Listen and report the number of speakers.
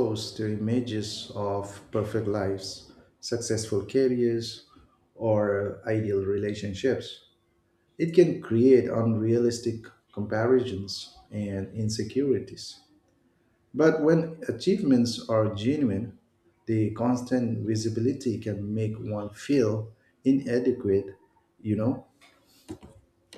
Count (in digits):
1